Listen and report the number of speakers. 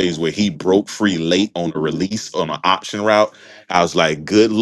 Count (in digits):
1